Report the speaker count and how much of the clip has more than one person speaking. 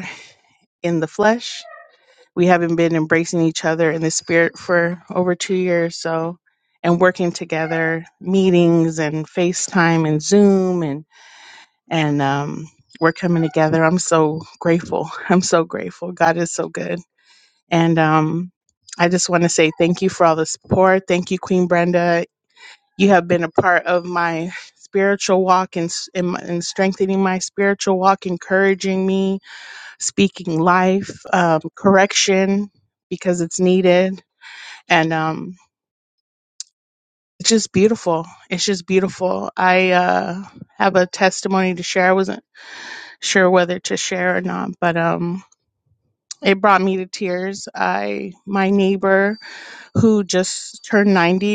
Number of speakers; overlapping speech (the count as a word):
one, no overlap